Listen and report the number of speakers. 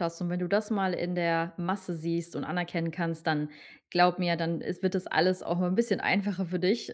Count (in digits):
1